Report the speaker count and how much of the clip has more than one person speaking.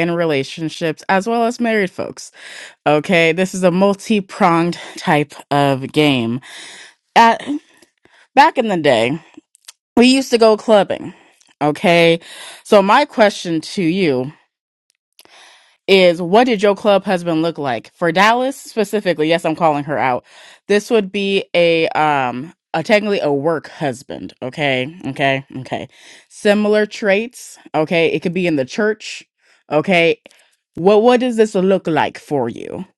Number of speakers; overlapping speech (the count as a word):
one, no overlap